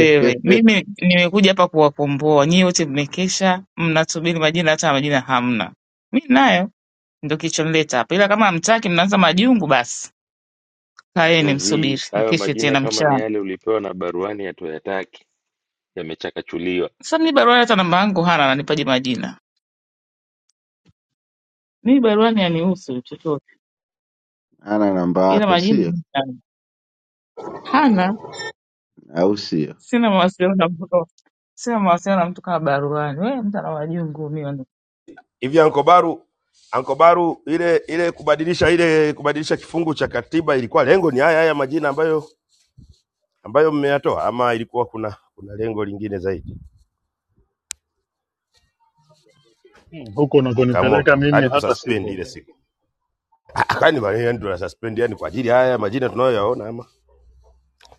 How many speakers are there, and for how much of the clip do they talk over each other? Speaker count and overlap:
five, about 7%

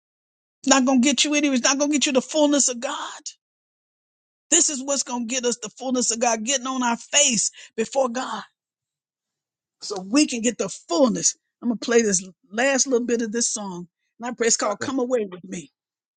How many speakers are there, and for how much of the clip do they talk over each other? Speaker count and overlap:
one, no overlap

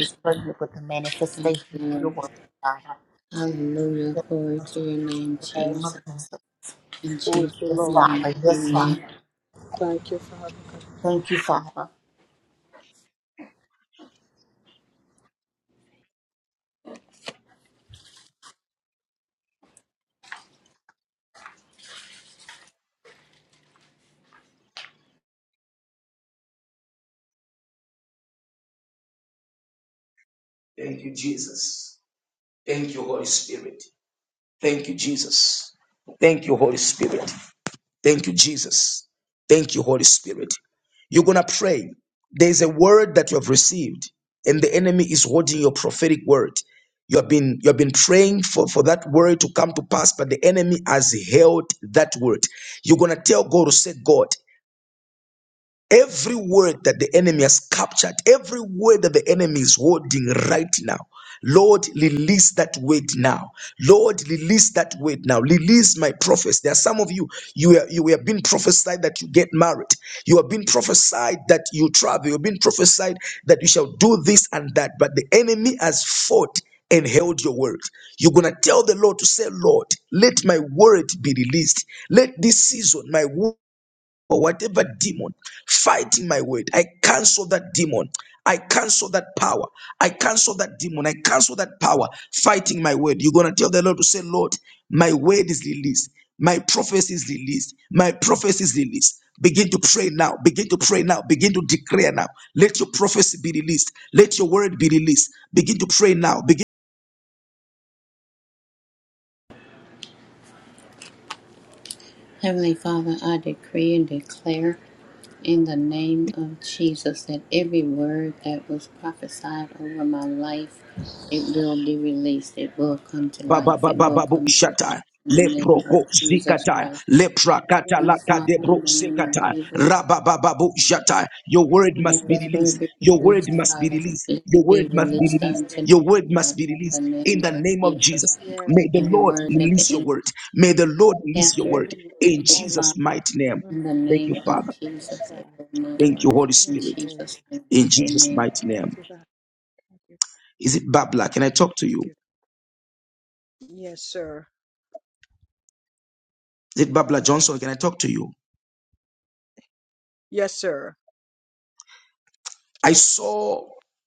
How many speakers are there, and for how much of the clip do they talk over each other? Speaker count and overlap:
five, about 13%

